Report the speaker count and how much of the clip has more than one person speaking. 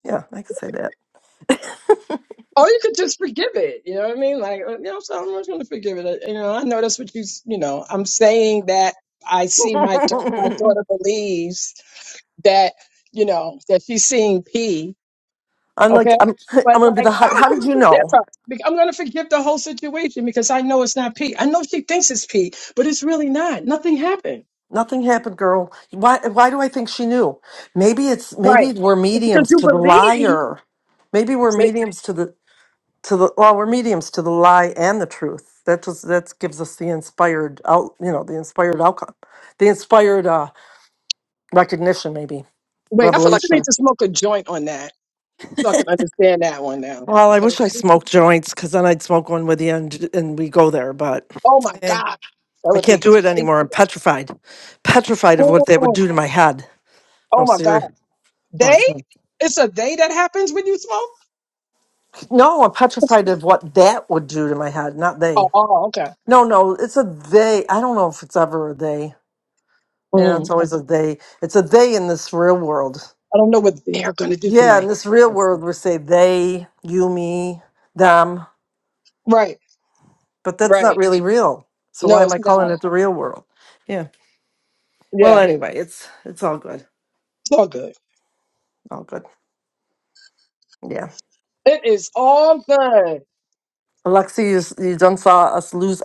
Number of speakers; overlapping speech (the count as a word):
two, about 10%